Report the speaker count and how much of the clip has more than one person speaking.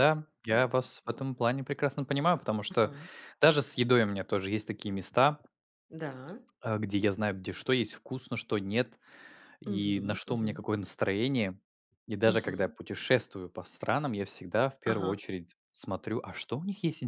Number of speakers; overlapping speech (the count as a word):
two, about 15%